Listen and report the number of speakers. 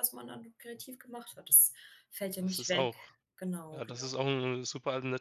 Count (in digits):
2